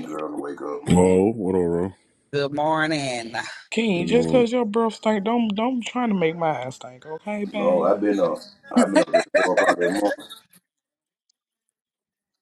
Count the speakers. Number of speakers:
4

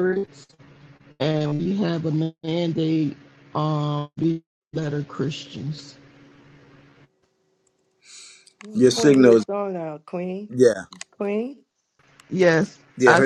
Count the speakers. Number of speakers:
3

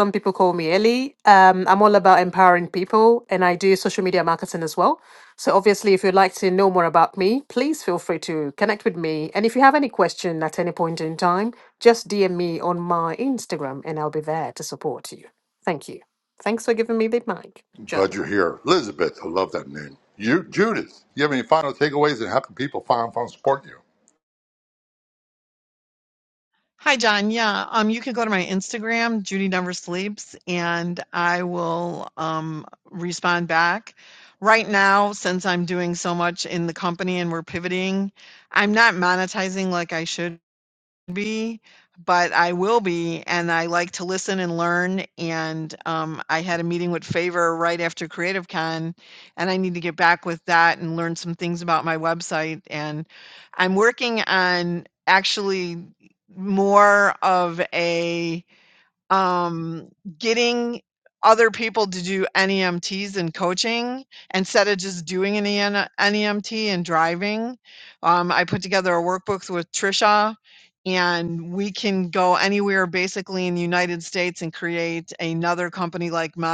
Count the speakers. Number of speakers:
3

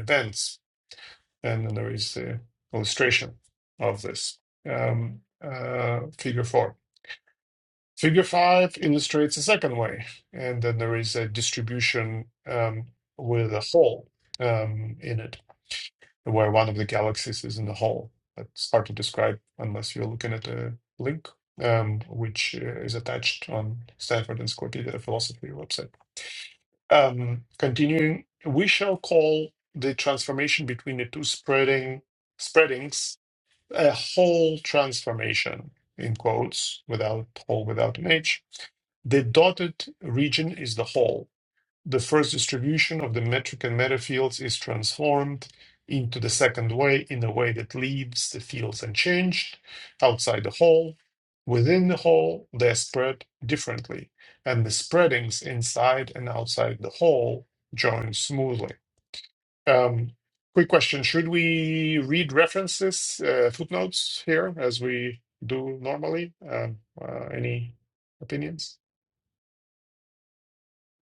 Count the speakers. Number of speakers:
1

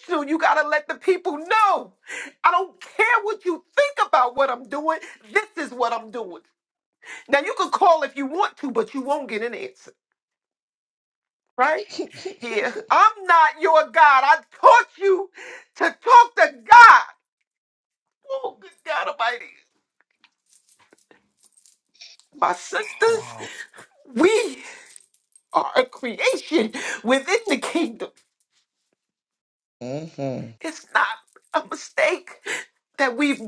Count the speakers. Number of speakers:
2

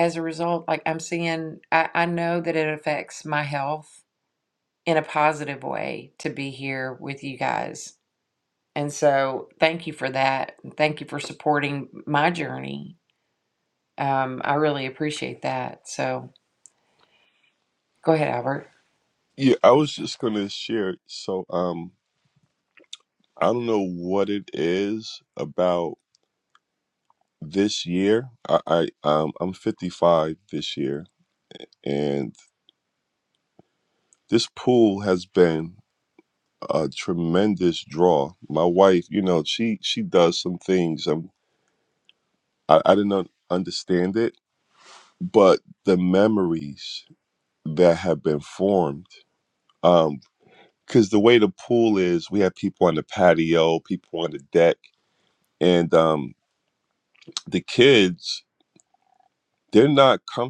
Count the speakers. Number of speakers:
2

